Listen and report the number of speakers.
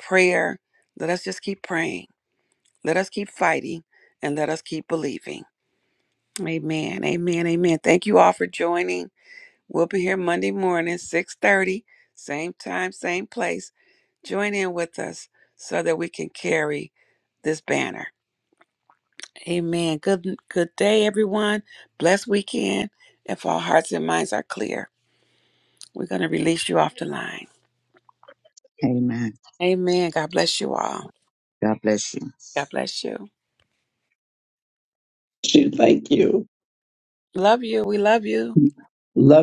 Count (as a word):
three